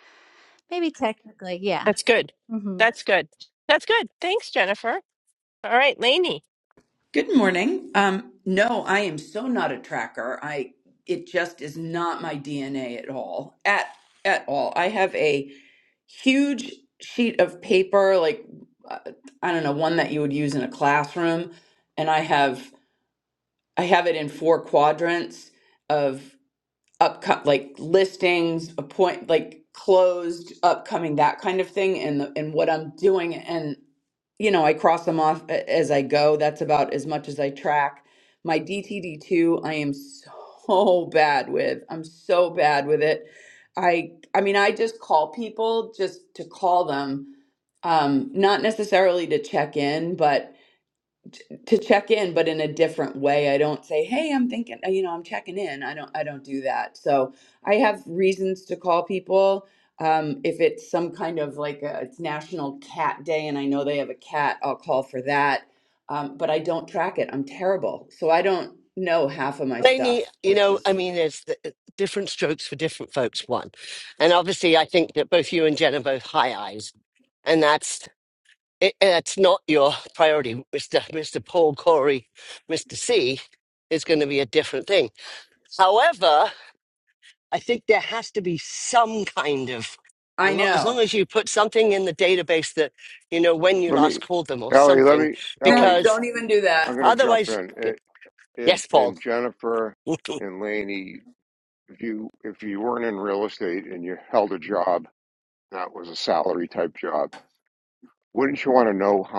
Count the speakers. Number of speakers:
five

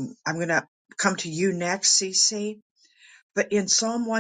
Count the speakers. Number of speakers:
one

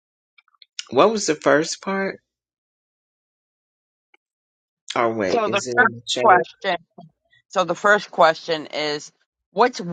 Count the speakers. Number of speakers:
two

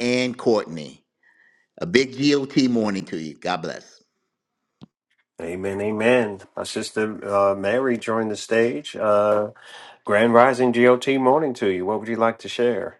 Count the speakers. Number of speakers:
two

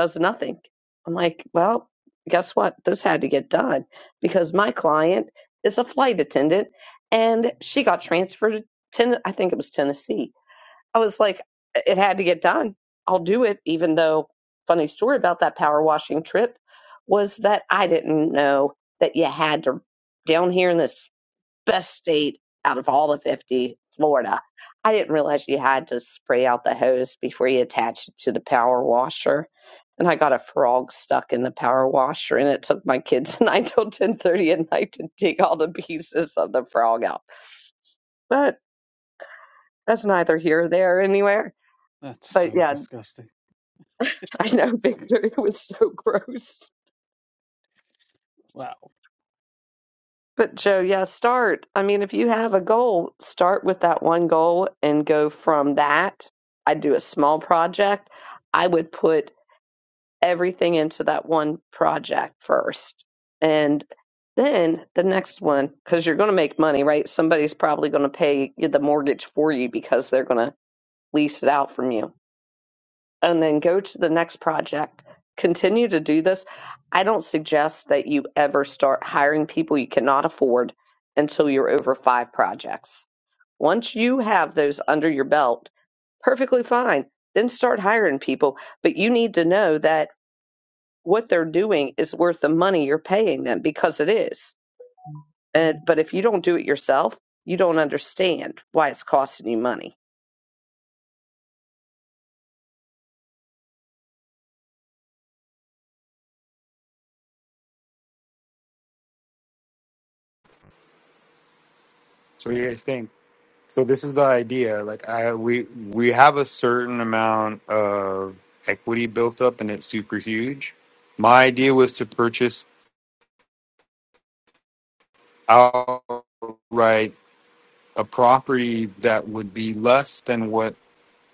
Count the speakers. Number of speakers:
three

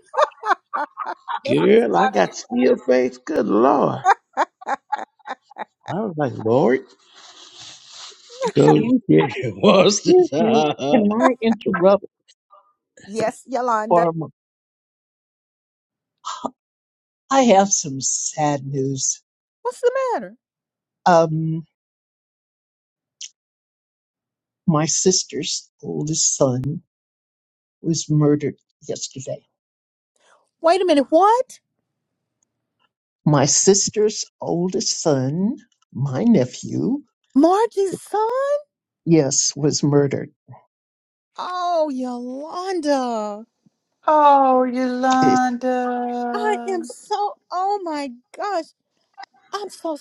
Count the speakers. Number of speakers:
four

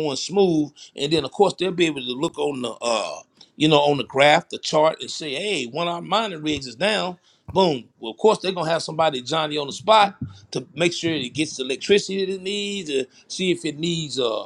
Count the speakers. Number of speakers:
one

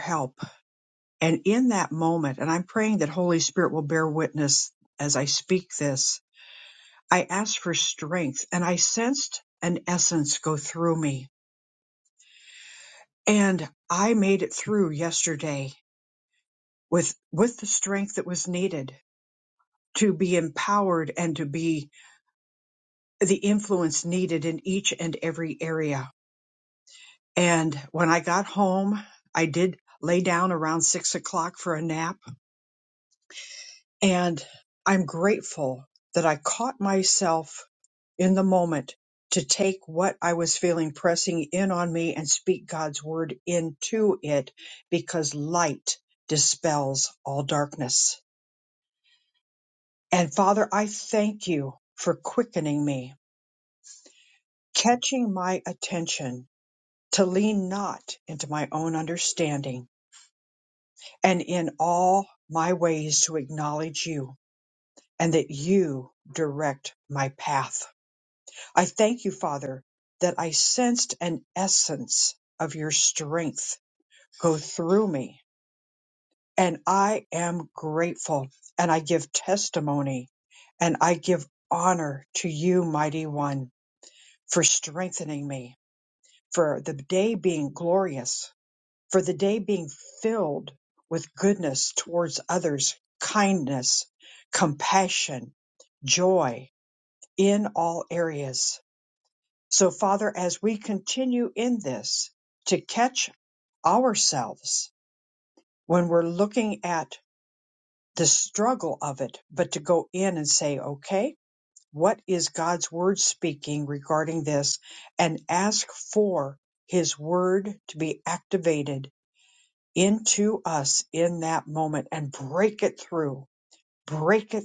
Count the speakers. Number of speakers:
one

